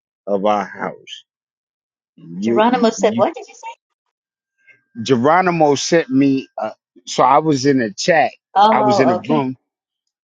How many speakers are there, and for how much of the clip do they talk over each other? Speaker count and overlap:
2, about 11%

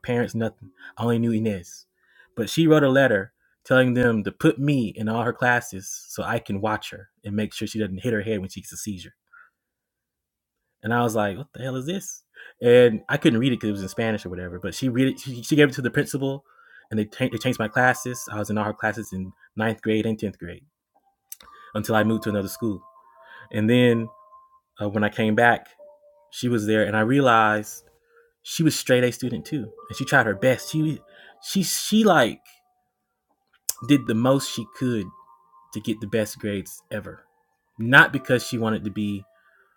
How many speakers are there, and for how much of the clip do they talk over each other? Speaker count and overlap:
1, no overlap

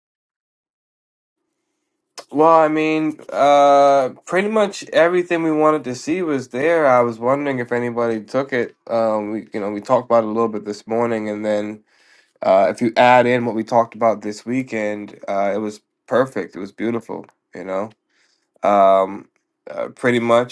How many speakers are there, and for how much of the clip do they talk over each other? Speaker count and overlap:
1, no overlap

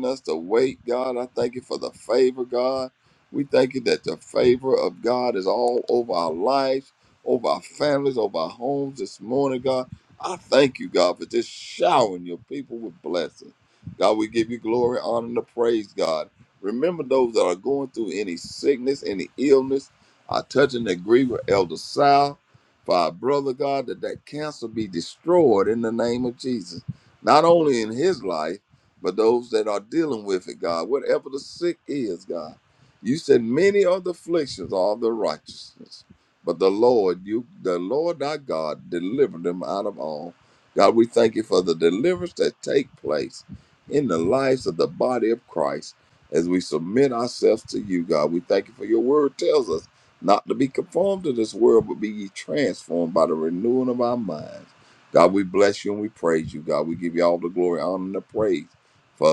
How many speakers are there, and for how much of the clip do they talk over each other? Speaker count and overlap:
1, no overlap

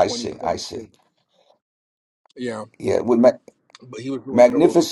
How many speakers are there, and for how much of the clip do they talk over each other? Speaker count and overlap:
2, about 27%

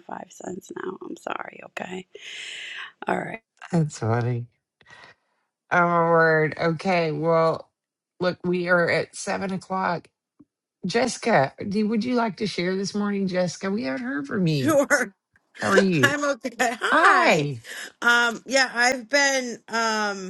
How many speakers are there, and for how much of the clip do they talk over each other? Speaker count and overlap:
3, about 4%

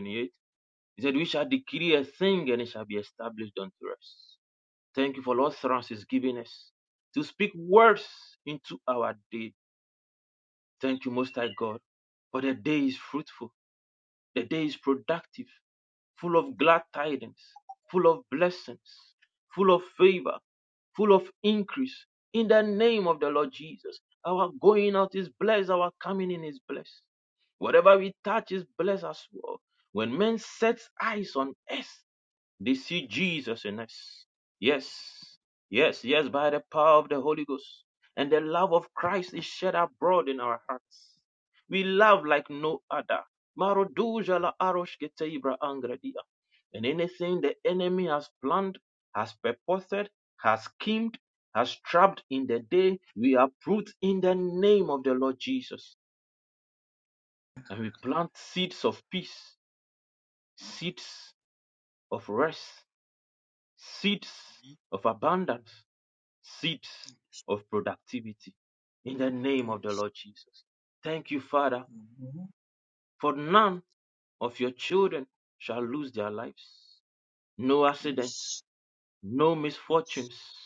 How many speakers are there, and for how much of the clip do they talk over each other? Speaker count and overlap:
1, no overlap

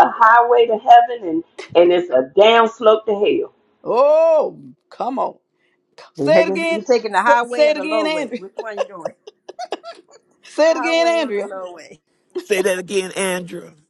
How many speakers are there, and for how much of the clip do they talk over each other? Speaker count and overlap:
4, about 18%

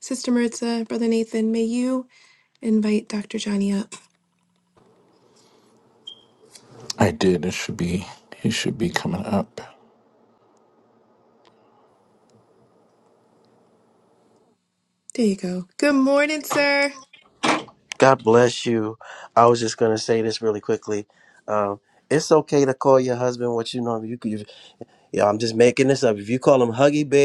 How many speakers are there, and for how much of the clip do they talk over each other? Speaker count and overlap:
3, no overlap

